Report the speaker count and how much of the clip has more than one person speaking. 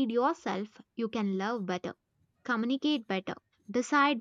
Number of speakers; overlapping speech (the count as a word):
one, no overlap